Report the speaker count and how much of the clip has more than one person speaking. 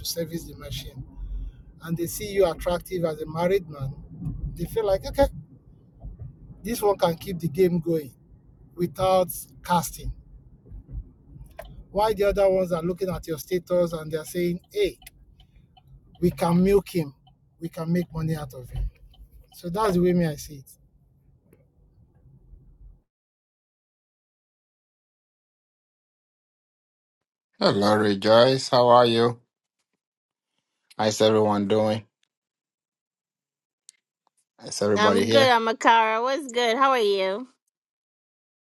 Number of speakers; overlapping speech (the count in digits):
3, about 1%